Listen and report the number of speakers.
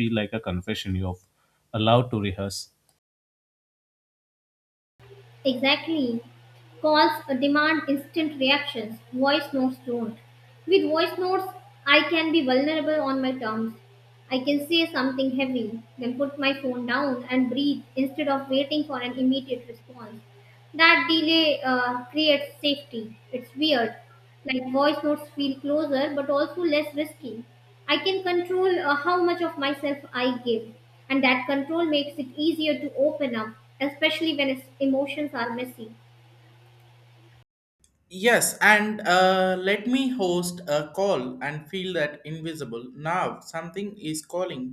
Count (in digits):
3